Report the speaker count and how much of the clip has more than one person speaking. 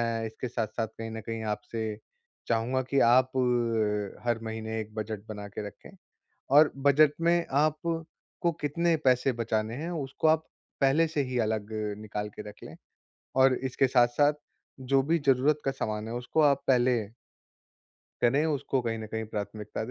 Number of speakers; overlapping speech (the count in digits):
1, no overlap